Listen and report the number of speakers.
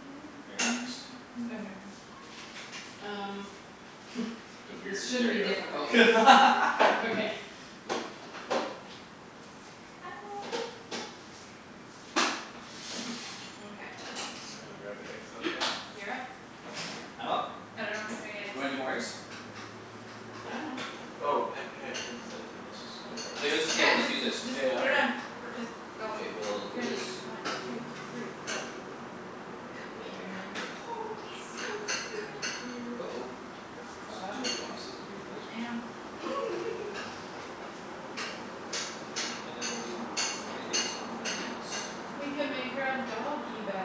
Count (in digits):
4